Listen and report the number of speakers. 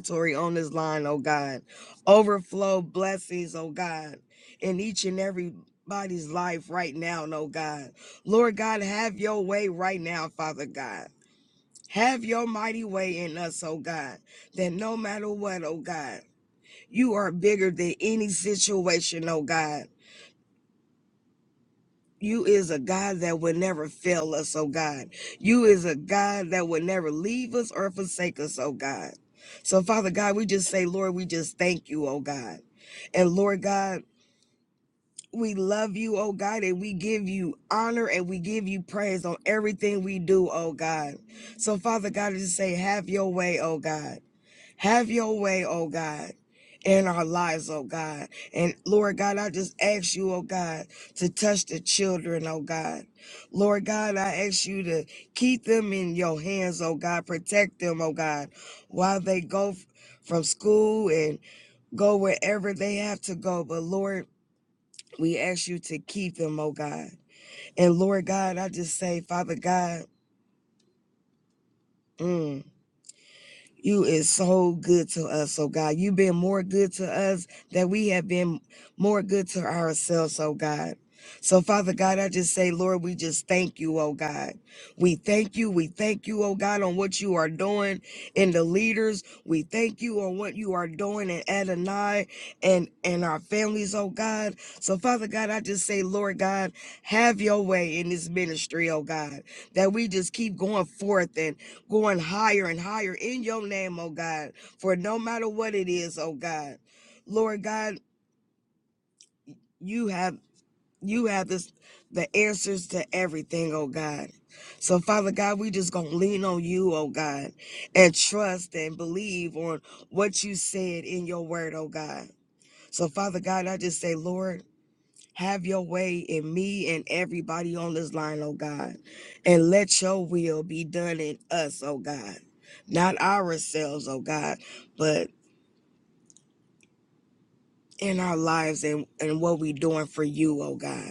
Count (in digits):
1